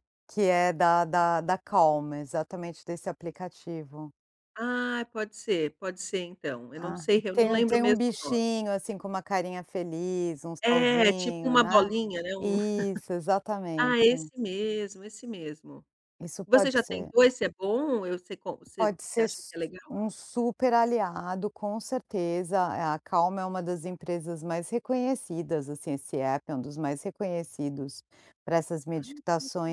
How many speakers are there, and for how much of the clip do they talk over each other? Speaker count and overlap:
2, about 15%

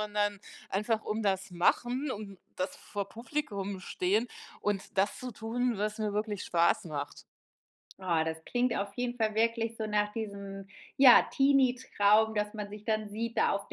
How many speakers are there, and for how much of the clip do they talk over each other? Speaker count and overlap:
2, no overlap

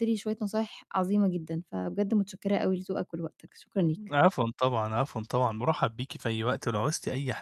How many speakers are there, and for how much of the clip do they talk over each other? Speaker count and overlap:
2, no overlap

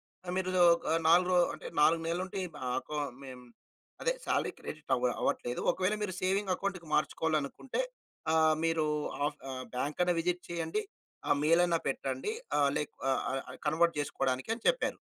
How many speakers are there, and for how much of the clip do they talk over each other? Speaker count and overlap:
1, no overlap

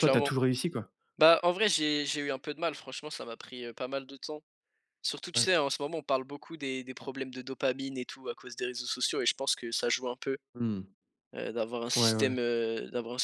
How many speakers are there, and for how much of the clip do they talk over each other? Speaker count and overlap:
2, about 6%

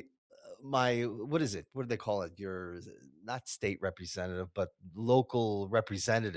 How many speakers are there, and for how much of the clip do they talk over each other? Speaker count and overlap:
1, no overlap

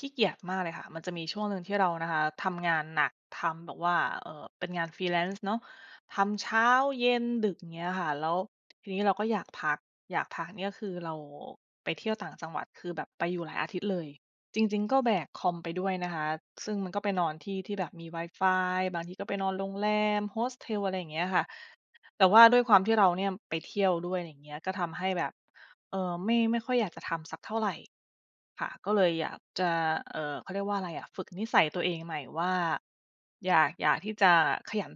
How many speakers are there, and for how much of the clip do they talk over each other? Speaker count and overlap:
1, no overlap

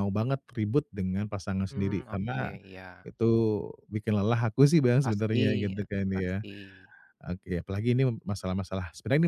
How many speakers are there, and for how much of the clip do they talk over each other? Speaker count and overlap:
2, about 20%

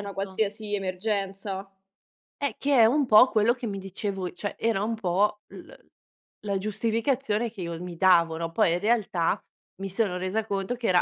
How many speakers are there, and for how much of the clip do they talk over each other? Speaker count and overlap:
2, about 3%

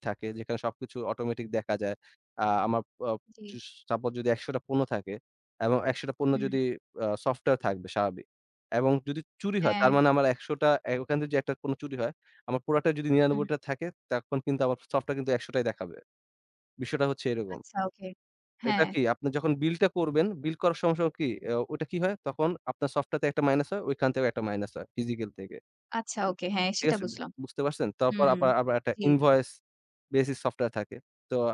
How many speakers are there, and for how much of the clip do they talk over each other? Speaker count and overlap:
2, about 7%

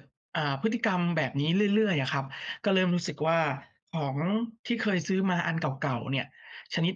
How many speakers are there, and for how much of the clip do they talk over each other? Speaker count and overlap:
1, no overlap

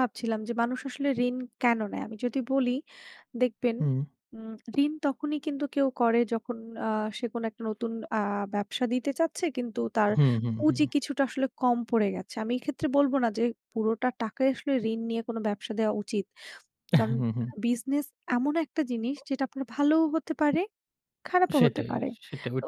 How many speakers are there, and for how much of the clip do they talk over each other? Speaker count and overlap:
2, about 5%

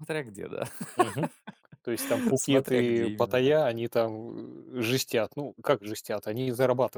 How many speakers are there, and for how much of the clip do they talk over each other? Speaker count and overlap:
2, about 17%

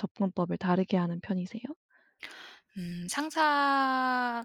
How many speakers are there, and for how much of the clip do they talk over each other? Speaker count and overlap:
2, no overlap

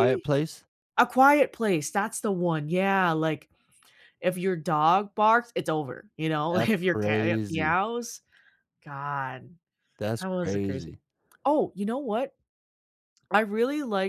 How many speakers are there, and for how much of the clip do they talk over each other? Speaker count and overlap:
2, about 15%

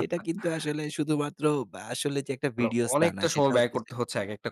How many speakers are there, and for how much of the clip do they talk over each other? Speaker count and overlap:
2, about 30%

